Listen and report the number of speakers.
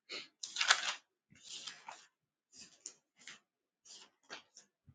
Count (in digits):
0